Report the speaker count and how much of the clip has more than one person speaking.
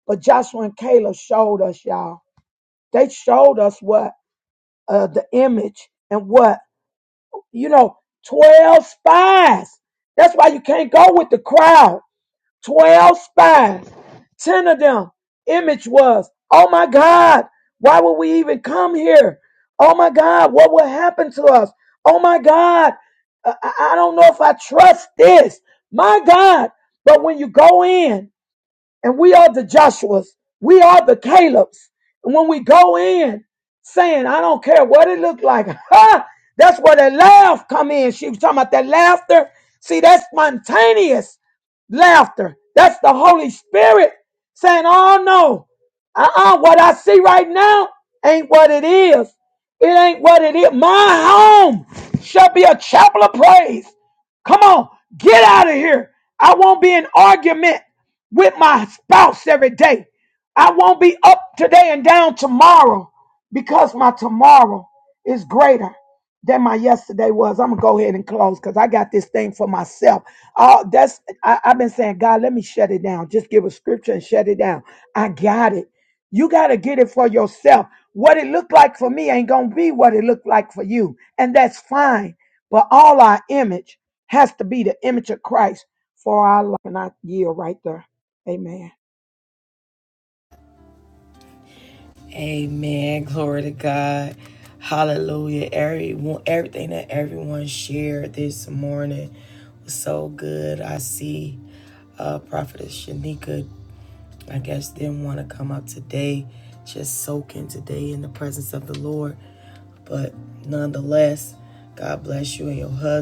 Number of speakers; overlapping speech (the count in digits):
2, no overlap